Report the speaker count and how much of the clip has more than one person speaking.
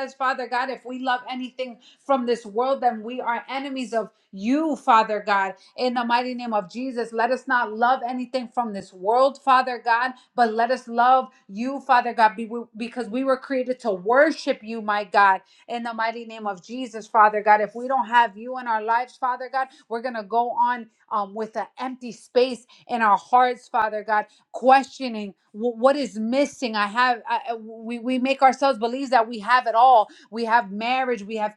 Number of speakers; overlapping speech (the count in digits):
1, no overlap